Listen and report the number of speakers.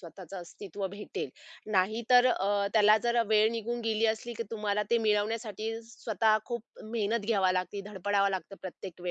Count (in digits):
1